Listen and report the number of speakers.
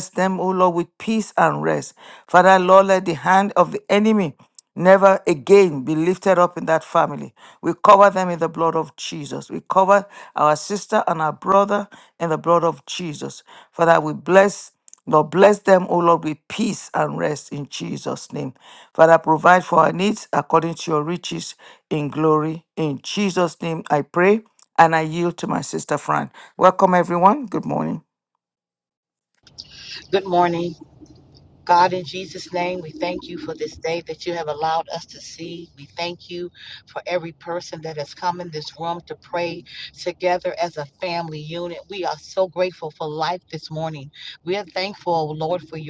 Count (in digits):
2